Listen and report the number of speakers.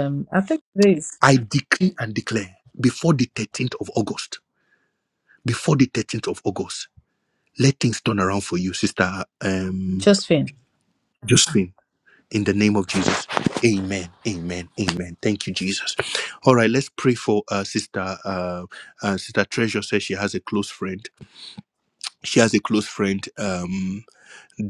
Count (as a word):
two